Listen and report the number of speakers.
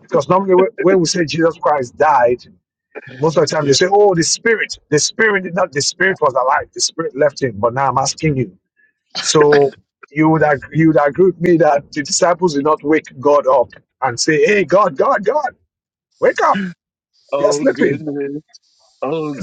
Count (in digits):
2